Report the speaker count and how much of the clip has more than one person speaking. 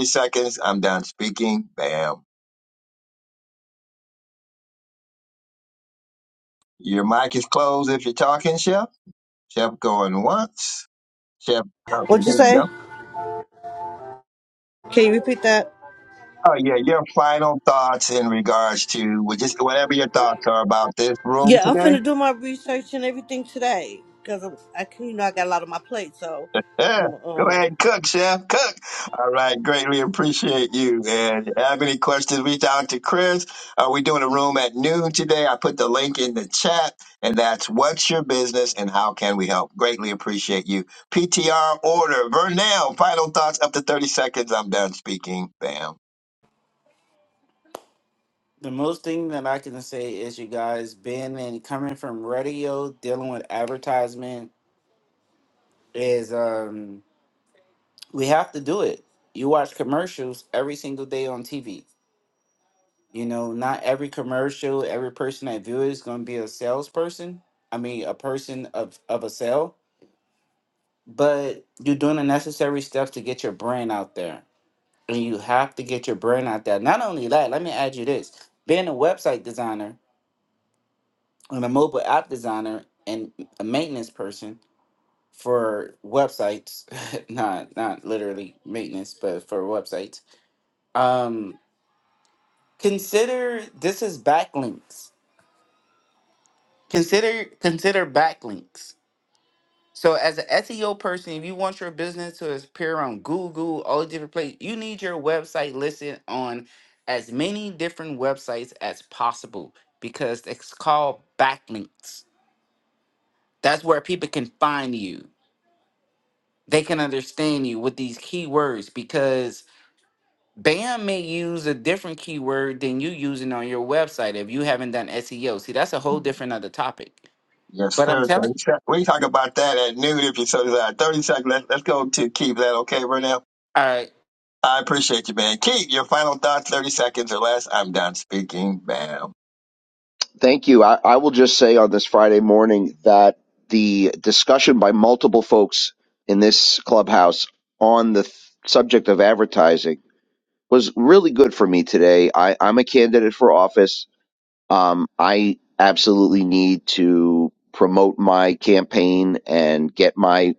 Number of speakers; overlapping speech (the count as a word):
four, about 1%